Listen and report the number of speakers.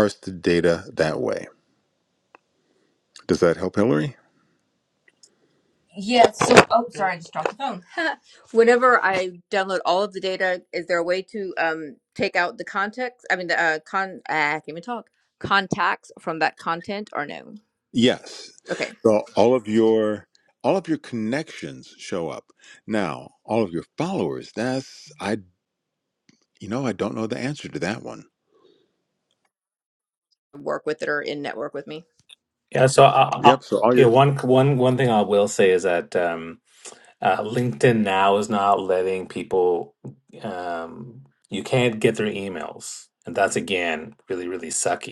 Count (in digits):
3